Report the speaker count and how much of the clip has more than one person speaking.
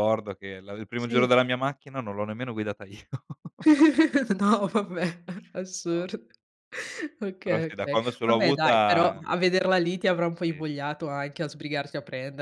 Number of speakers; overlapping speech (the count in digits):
2, about 19%